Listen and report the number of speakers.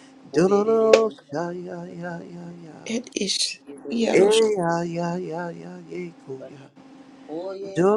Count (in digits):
3